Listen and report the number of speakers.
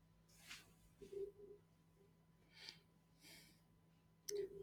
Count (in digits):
0